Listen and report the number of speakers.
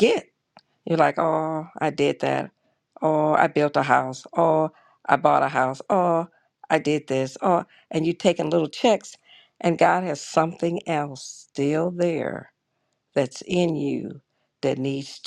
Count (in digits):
1